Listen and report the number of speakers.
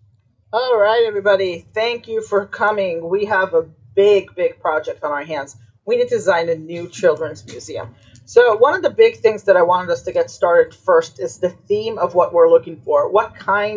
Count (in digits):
1